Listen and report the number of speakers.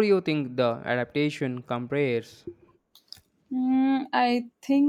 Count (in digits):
2